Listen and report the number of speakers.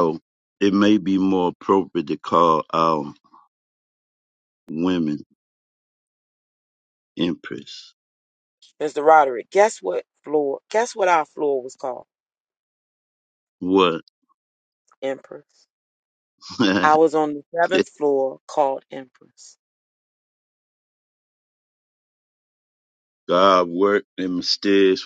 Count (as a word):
two